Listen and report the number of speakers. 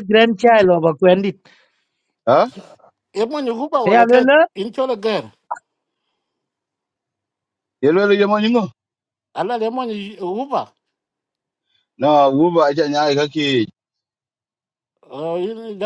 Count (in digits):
3